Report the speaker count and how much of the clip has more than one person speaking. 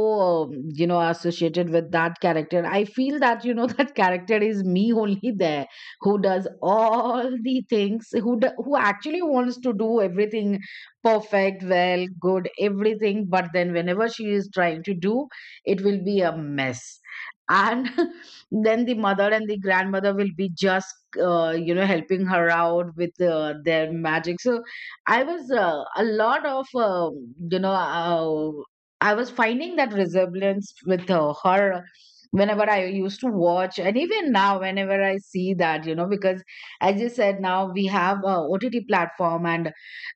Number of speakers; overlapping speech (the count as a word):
one, no overlap